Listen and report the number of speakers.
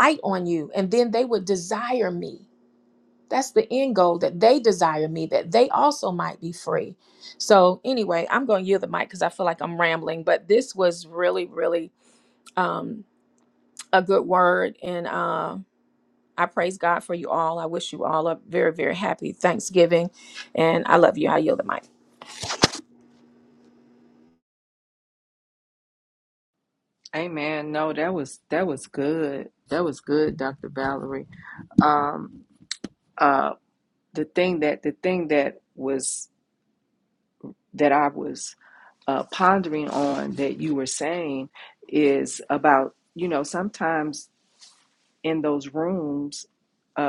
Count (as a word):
two